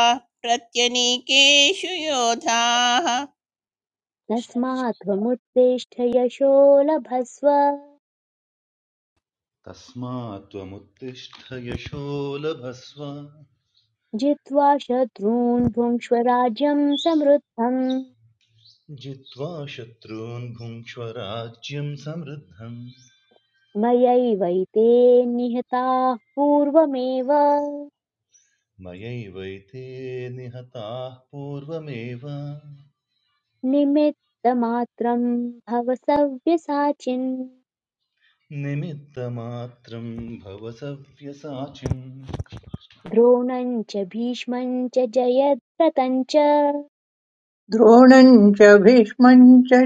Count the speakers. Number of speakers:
4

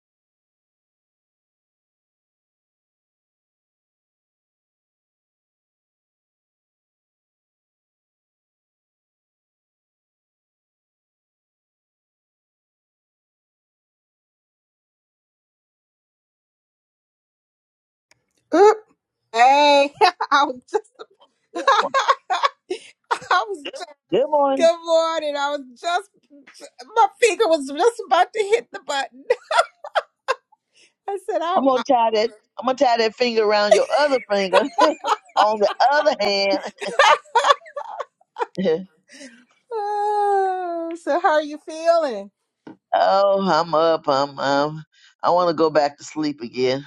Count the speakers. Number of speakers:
2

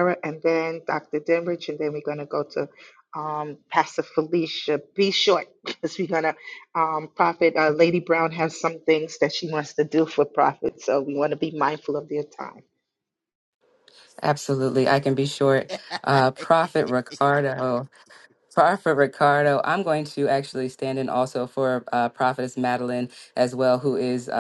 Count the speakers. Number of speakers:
2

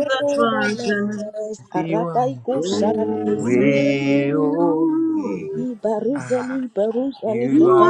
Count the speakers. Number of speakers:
3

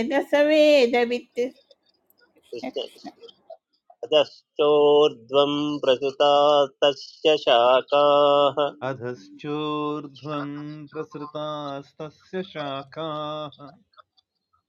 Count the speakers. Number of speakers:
3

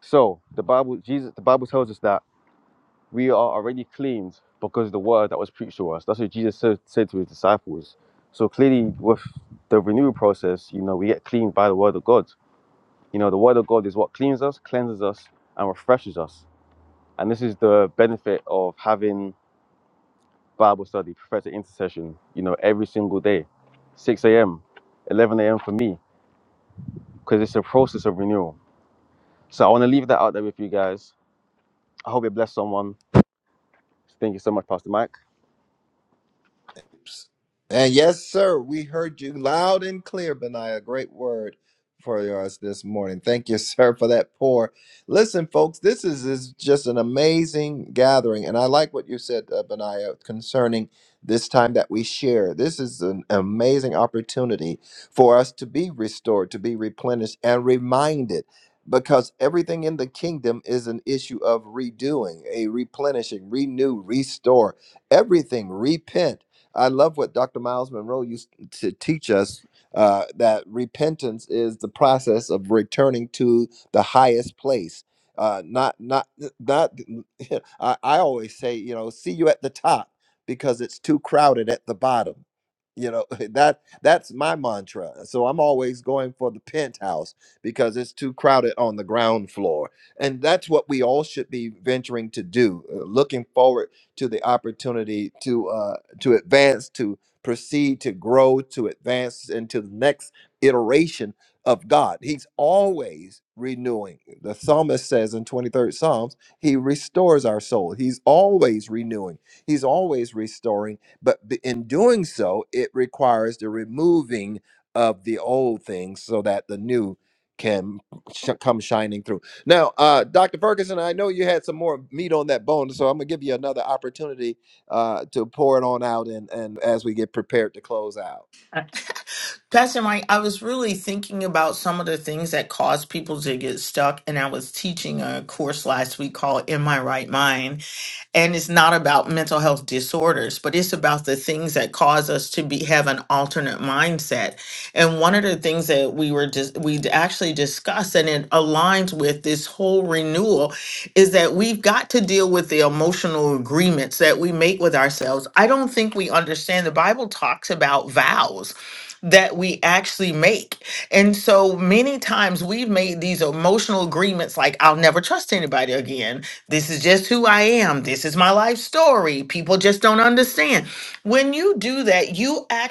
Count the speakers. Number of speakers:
3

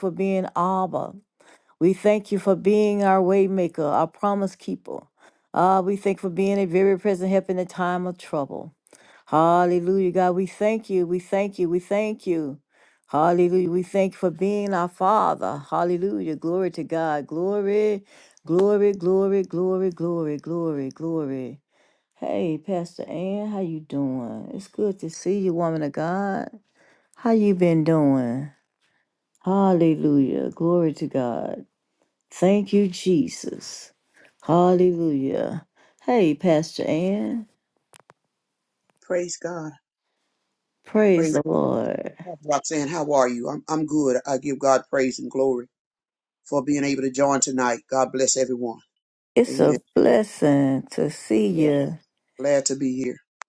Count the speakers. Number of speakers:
2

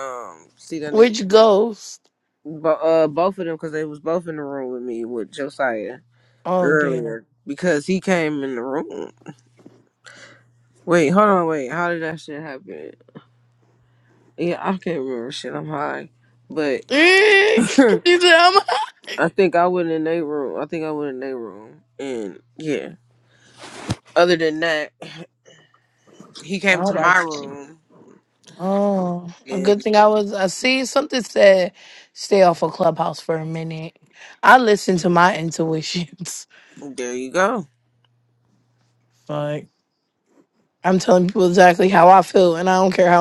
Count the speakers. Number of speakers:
2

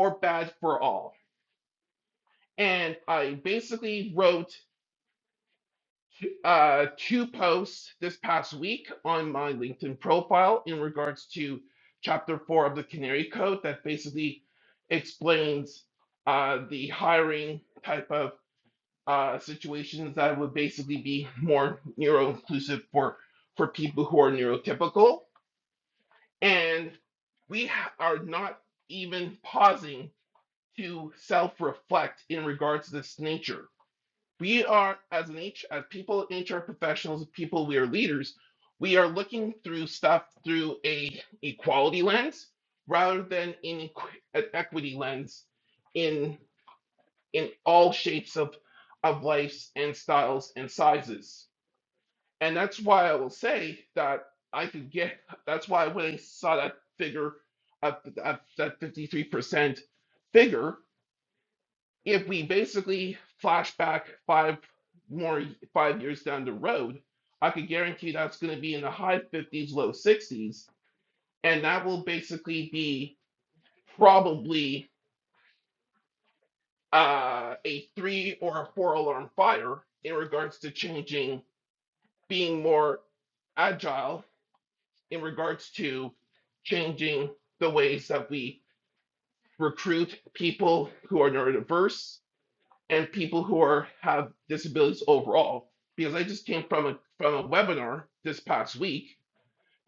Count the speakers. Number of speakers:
1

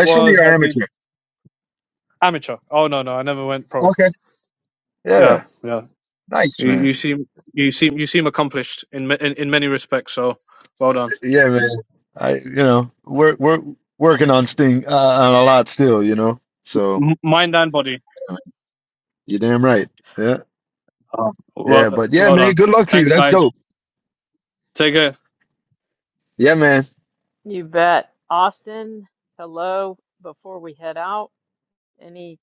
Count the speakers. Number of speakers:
3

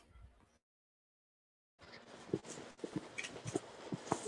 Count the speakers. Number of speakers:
0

